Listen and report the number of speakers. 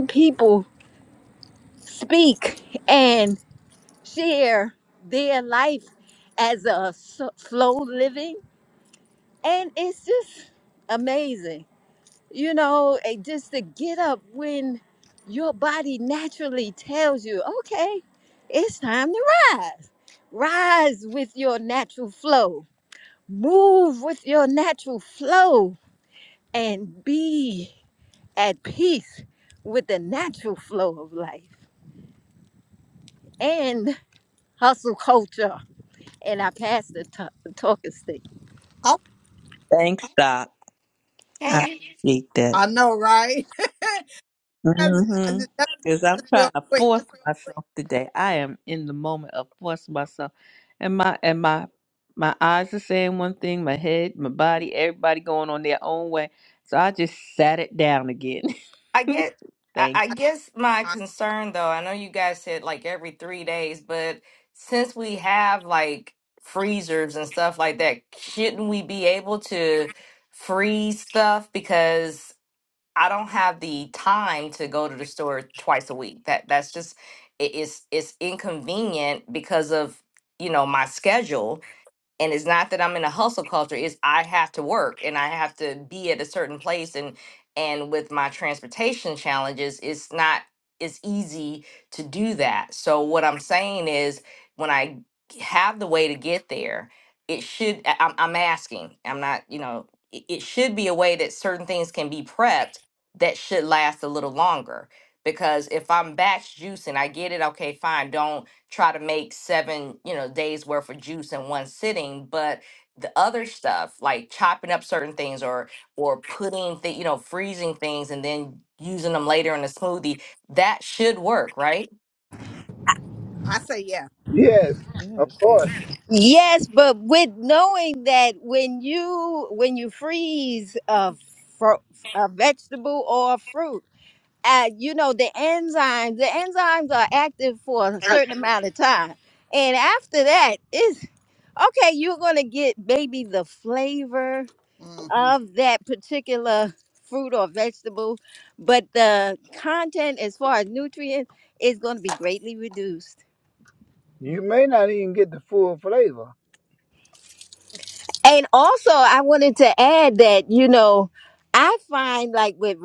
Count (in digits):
5